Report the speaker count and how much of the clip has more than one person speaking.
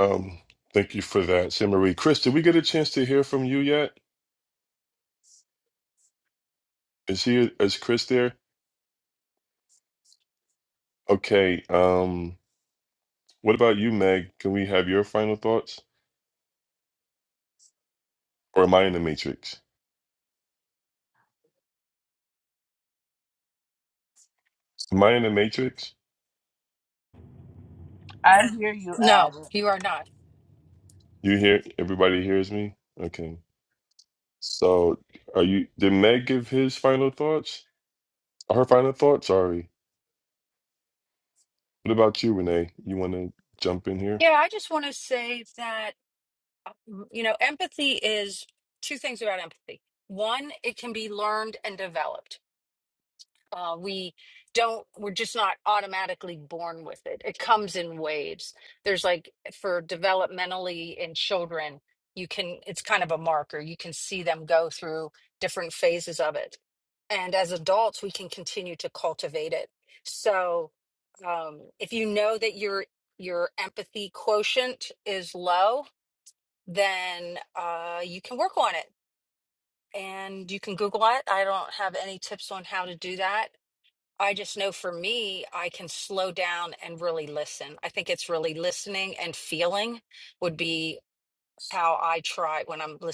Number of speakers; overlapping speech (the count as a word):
three, about 1%